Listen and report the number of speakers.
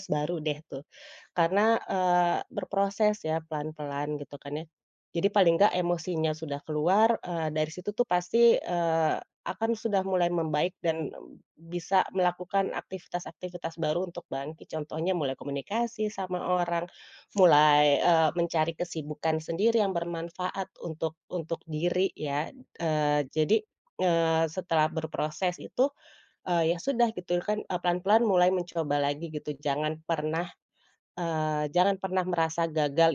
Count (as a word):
one